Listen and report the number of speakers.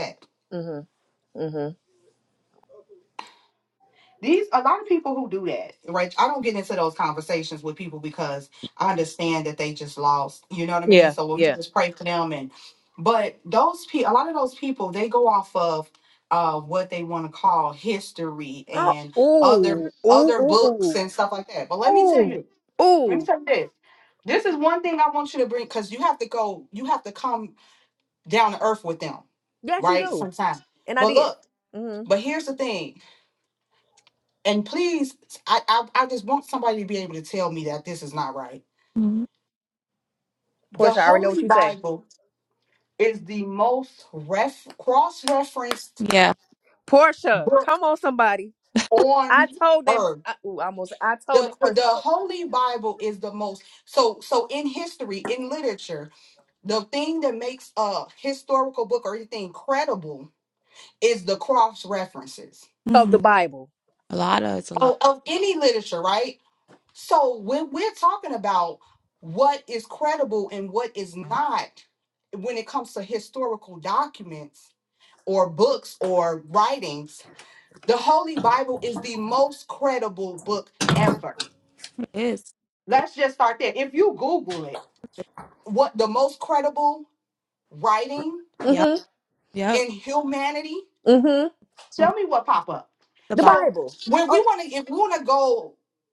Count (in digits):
3